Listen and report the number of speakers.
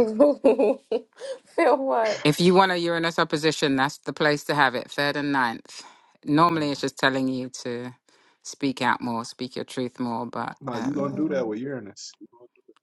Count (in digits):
3